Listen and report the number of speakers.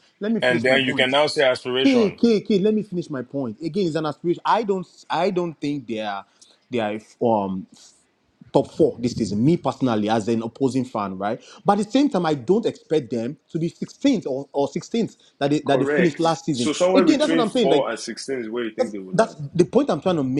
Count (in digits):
3